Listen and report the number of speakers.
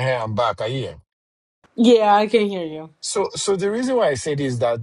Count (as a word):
two